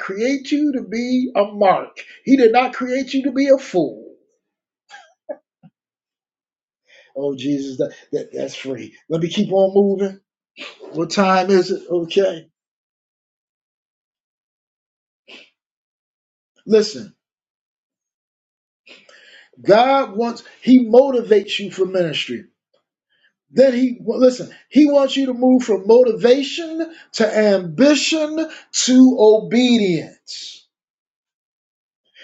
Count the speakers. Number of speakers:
1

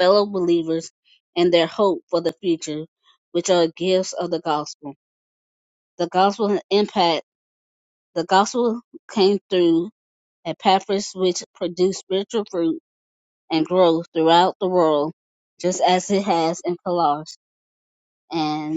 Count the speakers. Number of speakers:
1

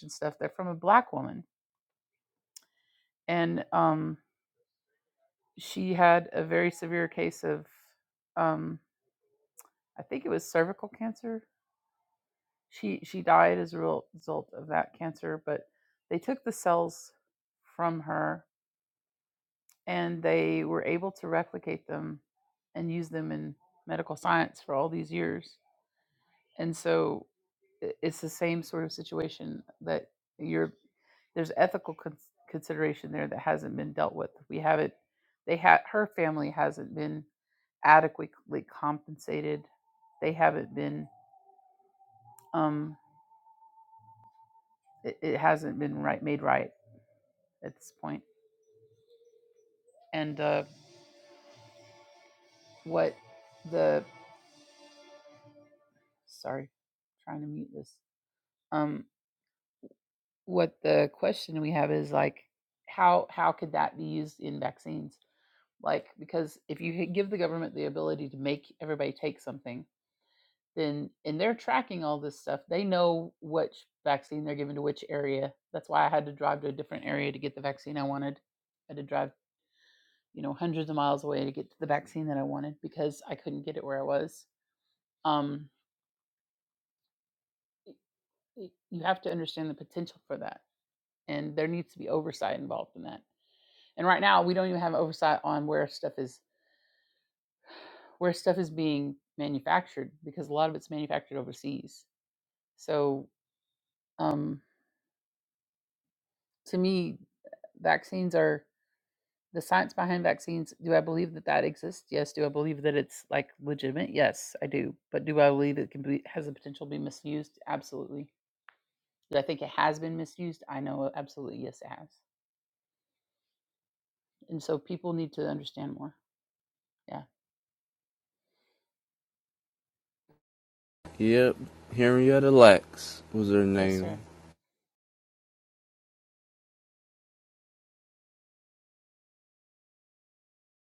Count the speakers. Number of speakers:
2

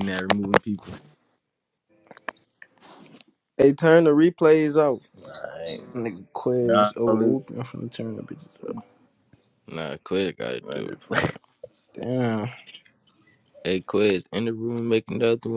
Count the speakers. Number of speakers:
4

